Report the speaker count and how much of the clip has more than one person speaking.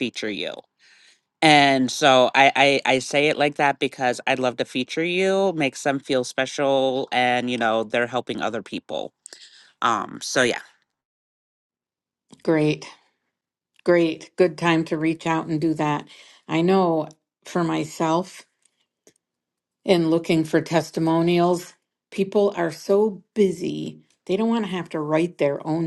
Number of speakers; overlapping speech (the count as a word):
two, no overlap